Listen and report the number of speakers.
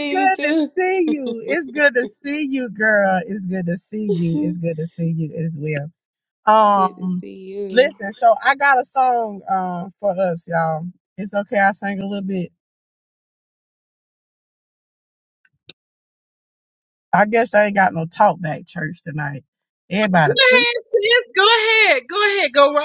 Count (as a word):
three